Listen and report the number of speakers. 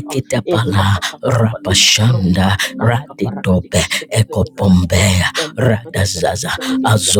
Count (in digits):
2